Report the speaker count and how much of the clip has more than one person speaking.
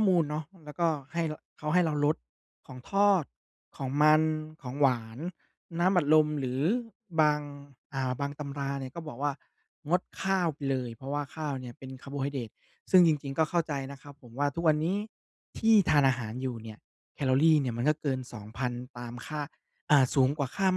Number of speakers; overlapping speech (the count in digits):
1, no overlap